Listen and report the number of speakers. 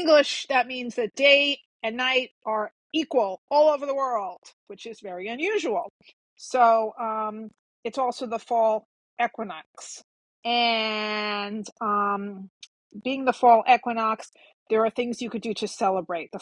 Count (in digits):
1